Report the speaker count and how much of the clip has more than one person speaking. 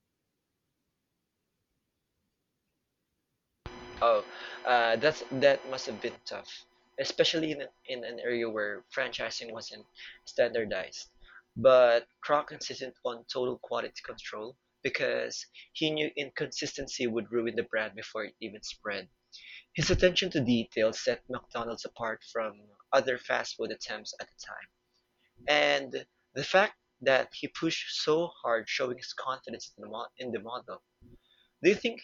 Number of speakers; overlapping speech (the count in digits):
1, no overlap